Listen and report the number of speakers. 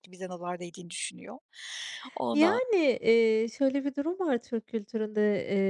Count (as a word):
two